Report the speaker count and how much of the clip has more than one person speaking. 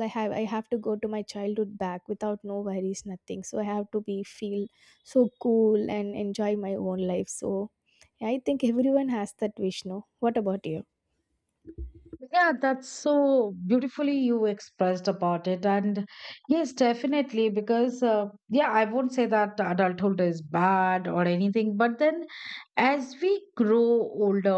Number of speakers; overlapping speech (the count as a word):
two, no overlap